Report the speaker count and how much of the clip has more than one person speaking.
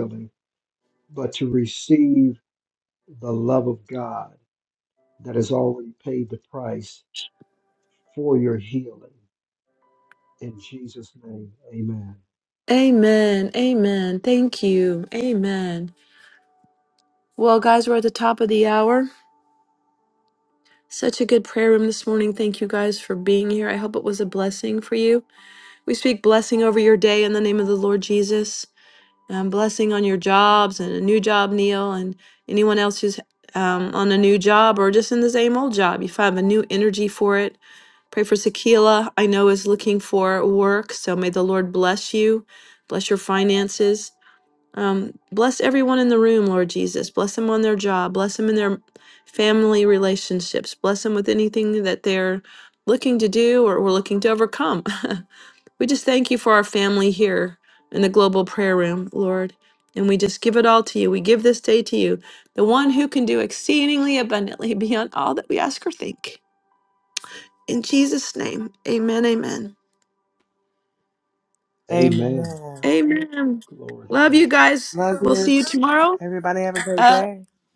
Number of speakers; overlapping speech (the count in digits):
3, about 2%